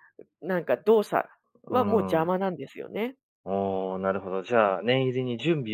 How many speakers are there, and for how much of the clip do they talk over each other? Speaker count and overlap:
2, about 3%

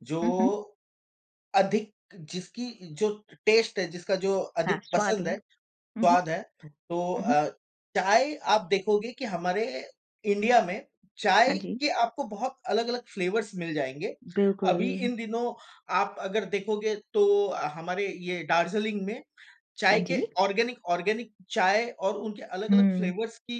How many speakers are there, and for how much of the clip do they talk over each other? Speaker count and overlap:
2, about 12%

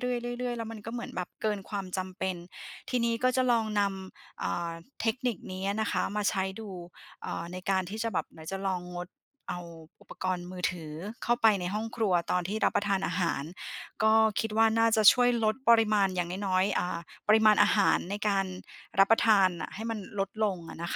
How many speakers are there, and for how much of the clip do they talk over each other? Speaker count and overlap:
1, no overlap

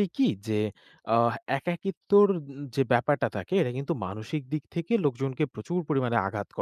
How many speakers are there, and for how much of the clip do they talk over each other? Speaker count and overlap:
1, no overlap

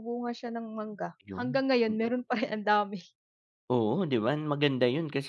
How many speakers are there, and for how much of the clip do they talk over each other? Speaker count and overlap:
2, about 6%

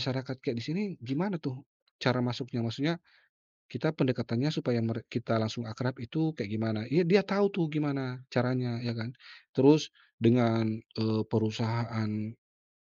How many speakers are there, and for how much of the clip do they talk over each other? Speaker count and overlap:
1, no overlap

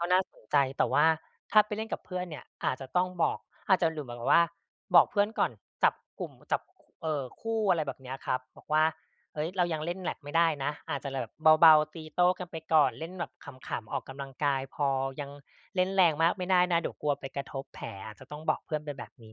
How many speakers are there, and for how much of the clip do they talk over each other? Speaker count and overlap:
1, no overlap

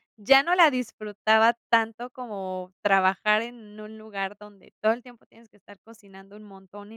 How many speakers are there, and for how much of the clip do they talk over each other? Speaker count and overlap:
1, no overlap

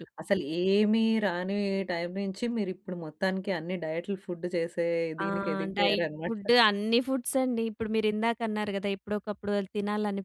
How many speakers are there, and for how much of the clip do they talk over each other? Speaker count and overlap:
2, about 9%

